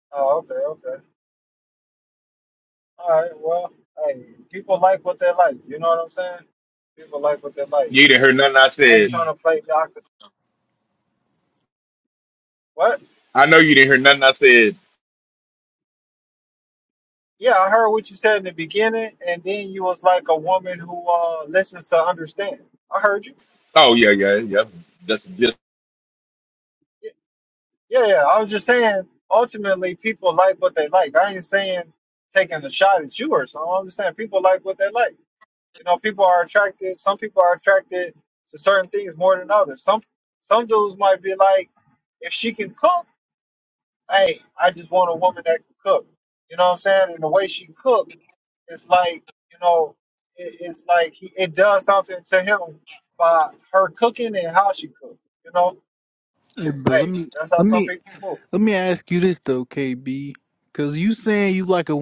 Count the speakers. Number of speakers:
three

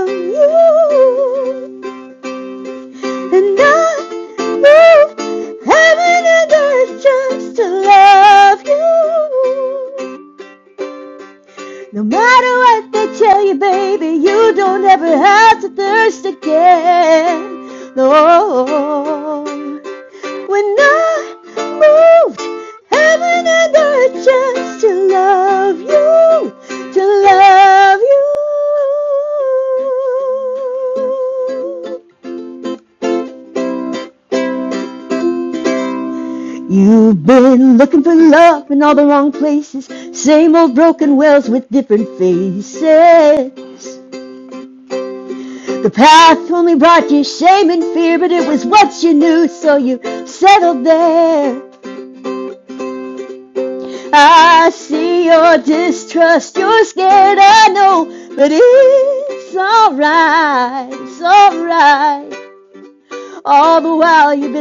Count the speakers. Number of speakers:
one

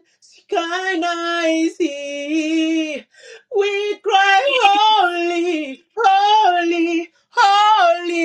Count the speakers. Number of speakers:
one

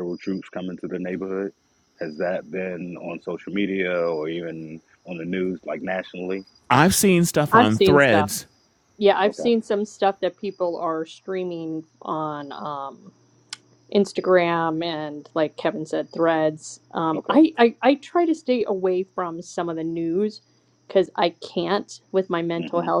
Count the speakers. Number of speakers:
three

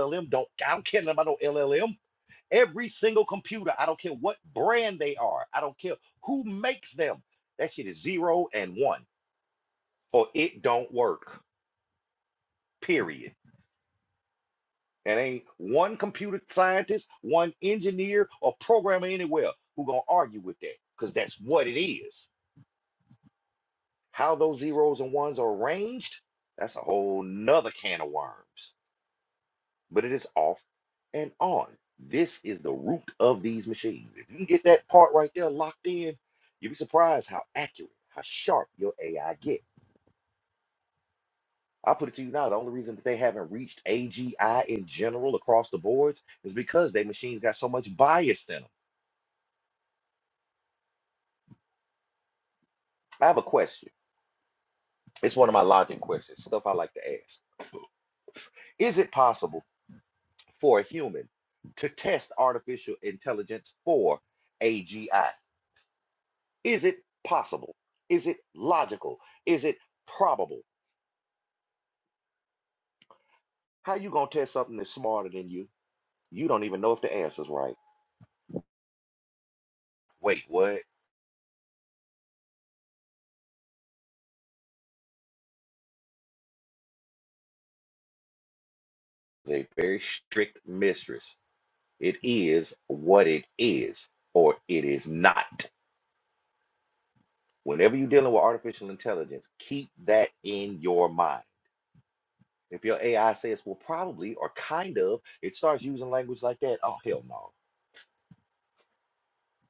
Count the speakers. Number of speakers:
one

